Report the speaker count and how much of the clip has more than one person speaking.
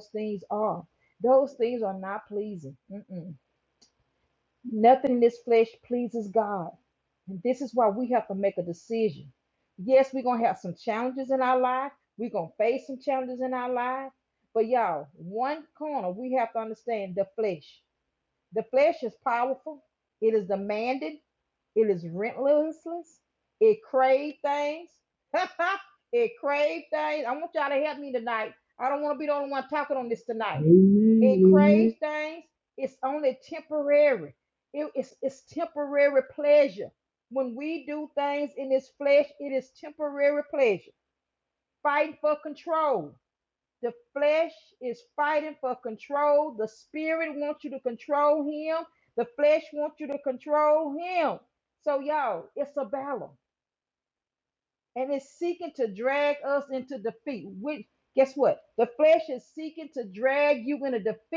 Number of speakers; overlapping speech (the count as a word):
two, about 1%